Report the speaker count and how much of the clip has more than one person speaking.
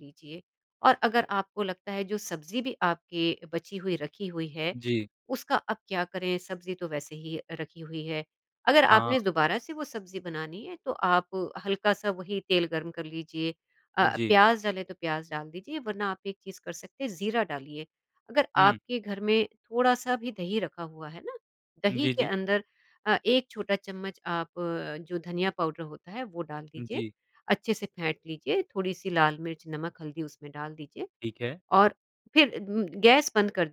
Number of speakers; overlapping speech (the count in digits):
2, about 4%